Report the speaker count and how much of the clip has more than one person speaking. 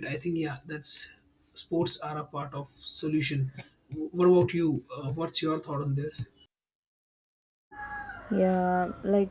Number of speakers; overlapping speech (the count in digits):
2, no overlap